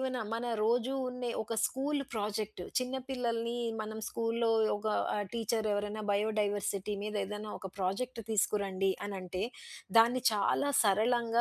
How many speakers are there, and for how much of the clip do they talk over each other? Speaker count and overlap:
one, no overlap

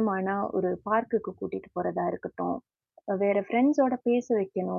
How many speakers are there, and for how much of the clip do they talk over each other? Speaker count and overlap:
one, no overlap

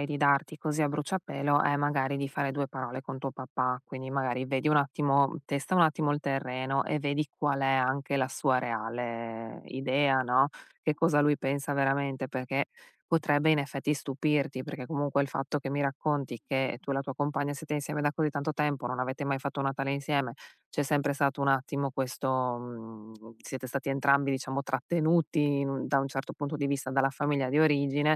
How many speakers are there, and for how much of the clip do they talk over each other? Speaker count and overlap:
one, no overlap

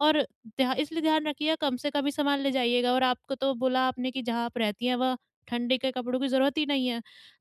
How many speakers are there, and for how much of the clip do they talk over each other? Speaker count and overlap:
one, no overlap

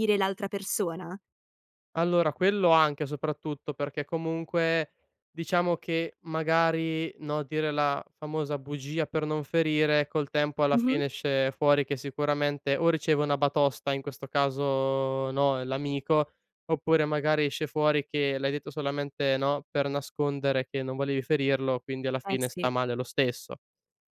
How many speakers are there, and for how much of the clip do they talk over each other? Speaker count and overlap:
two, about 3%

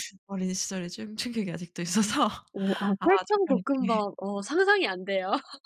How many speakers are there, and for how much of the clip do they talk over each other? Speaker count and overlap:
two, about 18%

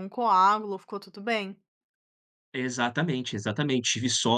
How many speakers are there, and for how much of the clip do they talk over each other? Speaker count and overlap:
two, no overlap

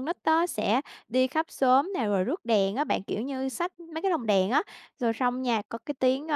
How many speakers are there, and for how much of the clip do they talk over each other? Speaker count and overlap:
one, no overlap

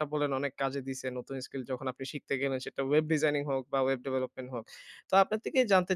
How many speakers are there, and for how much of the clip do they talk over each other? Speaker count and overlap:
one, no overlap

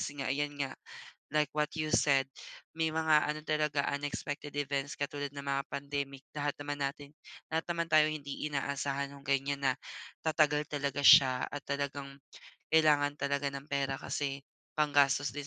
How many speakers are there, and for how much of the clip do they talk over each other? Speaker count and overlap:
one, no overlap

